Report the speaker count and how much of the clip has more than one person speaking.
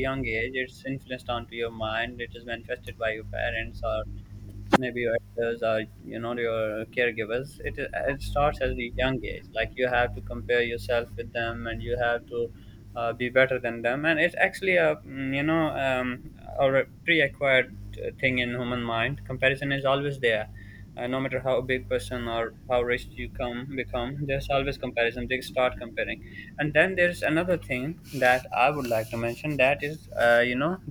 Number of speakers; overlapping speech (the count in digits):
1, no overlap